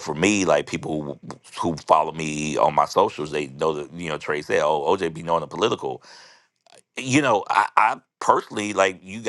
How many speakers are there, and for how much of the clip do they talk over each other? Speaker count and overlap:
1, no overlap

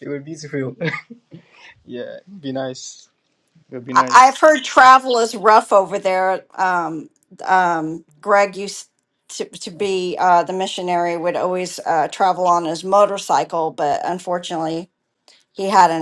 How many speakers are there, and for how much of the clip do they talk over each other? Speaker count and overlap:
2, no overlap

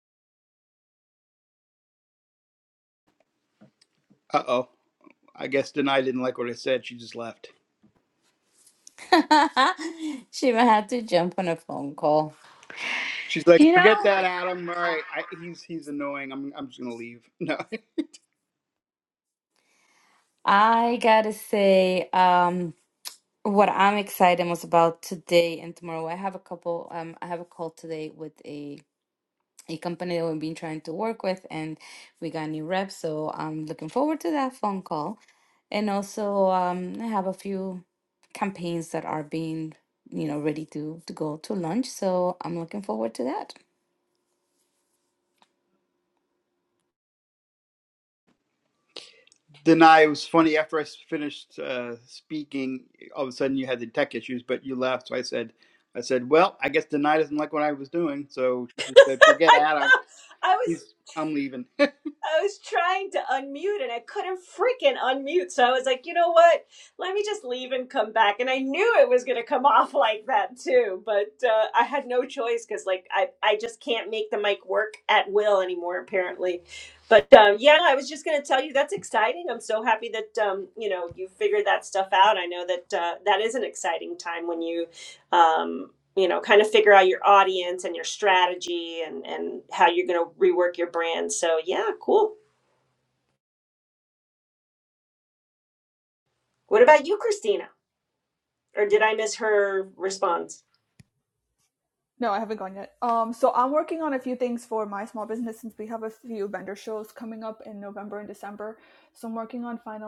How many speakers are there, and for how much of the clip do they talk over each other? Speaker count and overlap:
4, about 1%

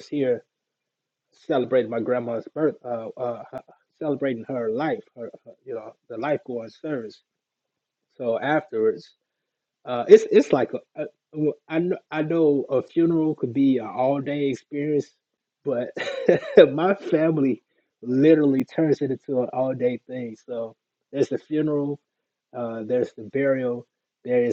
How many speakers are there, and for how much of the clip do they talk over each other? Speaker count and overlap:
1, no overlap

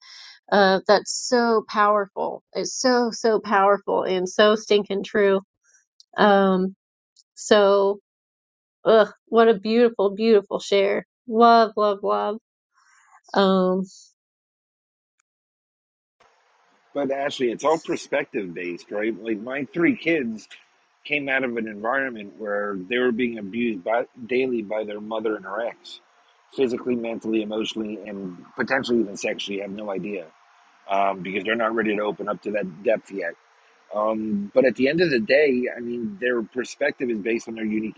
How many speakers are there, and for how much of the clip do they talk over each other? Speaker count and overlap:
2, no overlap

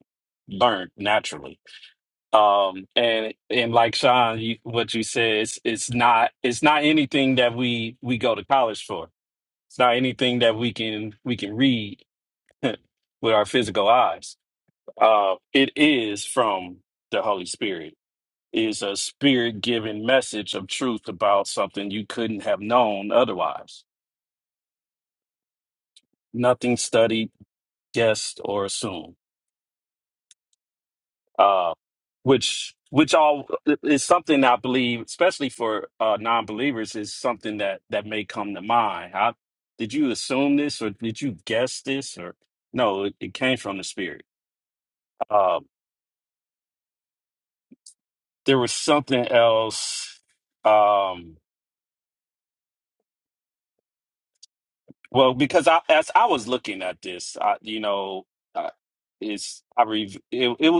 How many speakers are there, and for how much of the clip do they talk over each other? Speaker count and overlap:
1, no overlap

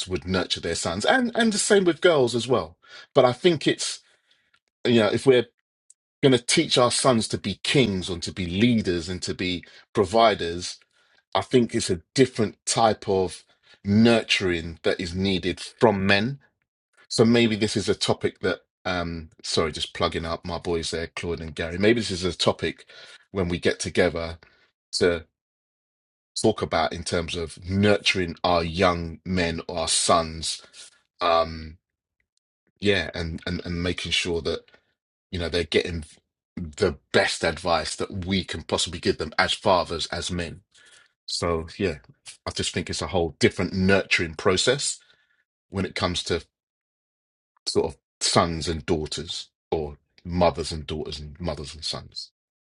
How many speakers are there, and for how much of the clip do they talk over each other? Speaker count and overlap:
1, no overlap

